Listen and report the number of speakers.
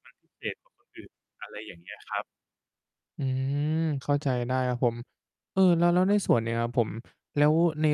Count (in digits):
2